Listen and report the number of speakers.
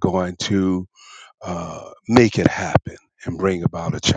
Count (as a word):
one